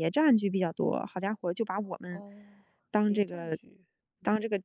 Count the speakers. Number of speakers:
2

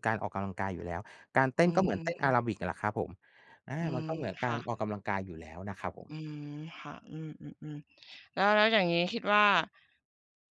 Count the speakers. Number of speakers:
2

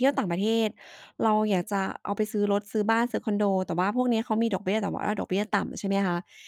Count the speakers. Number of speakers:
1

